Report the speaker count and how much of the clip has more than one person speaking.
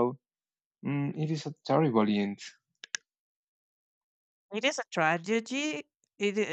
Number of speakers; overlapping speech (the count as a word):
two, no overlap